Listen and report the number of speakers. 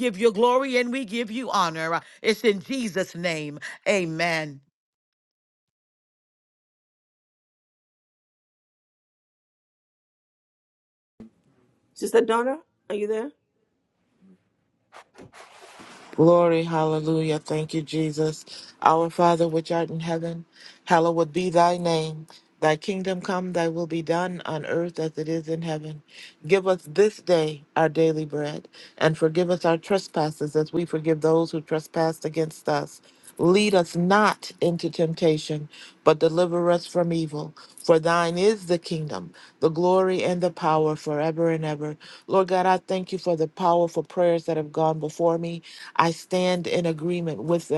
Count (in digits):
3